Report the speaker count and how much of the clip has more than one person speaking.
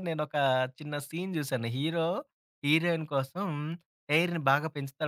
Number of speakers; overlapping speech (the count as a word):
one, no overlap